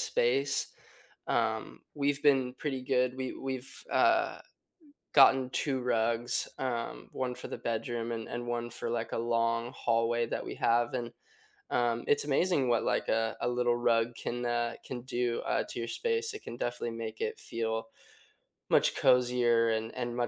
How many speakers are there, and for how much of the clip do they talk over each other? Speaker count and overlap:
1, no overlap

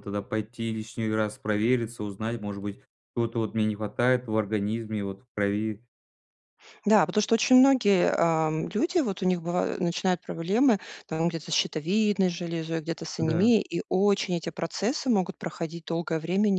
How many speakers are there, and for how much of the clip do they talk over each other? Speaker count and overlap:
2, about 2%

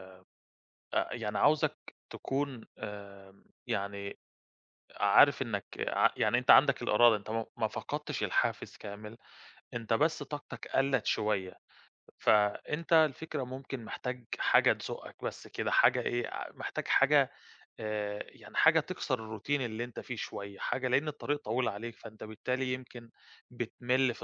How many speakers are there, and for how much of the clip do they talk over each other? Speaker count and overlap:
1, no overlap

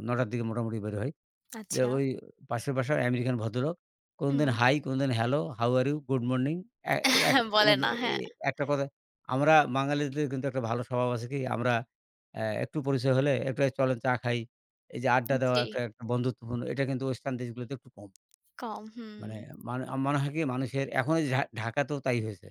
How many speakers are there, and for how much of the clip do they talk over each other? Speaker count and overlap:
2, about 7%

